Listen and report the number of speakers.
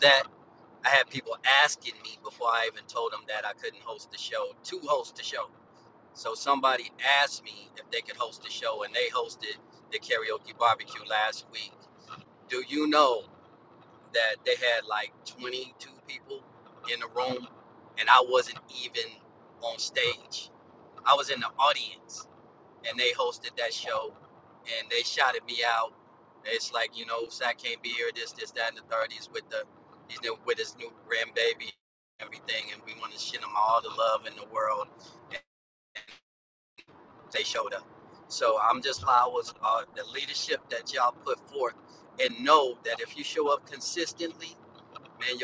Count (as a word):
one